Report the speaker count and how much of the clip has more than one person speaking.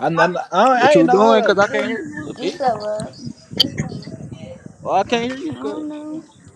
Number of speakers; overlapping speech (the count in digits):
3, about 27%